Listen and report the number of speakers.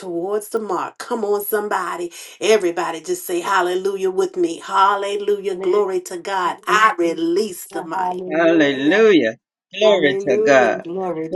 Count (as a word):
three